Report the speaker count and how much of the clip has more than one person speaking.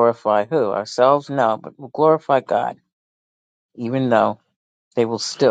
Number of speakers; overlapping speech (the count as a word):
one, no overlap